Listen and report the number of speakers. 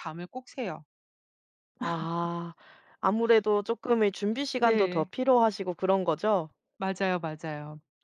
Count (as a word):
two